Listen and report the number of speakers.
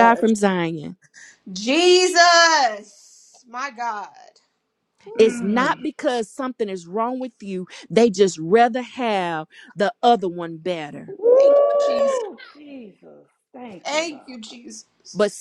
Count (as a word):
three